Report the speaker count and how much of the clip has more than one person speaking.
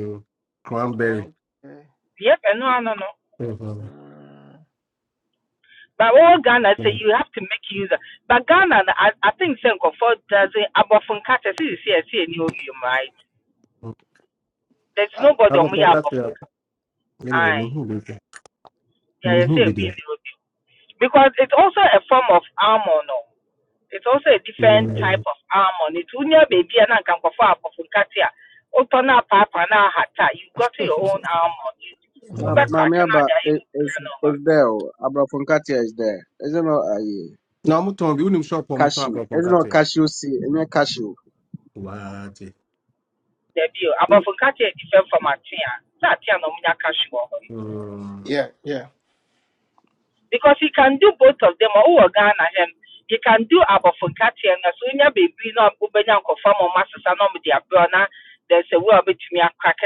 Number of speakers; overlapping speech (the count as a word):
four, about 7%